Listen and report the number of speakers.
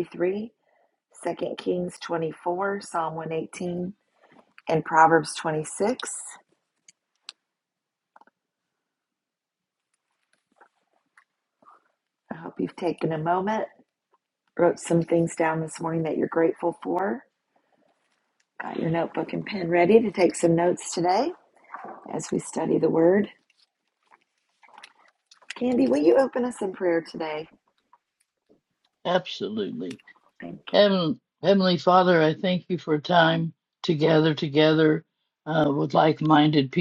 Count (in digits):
2